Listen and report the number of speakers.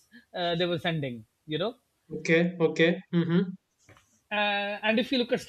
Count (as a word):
two